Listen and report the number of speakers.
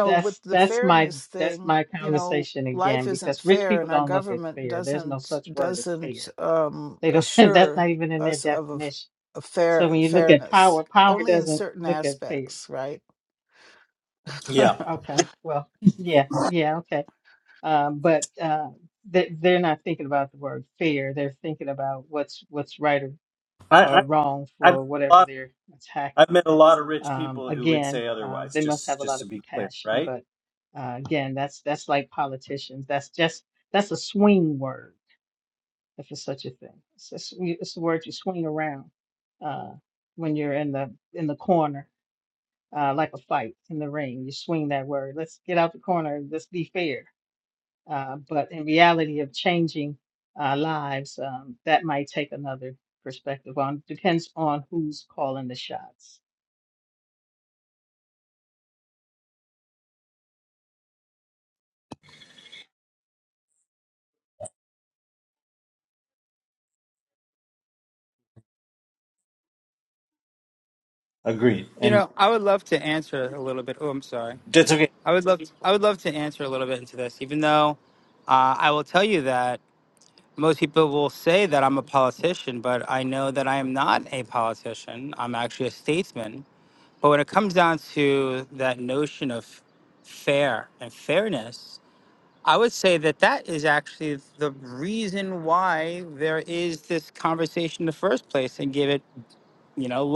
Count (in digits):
4